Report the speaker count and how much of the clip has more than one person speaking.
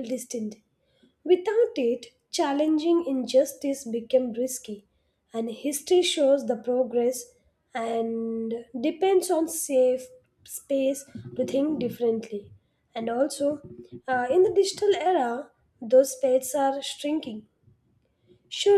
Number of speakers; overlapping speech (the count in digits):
1, no overlap